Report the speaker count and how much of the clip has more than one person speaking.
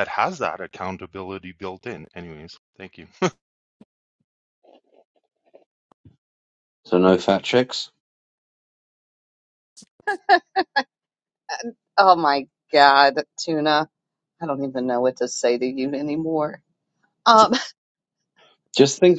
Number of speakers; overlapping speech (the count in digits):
3, no overlap